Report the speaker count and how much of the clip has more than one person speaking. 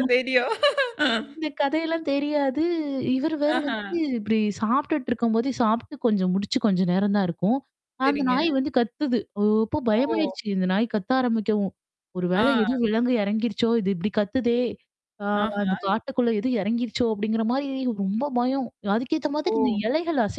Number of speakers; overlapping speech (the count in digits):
2, about 10%